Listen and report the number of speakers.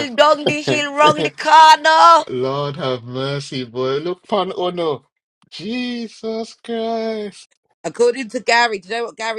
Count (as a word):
three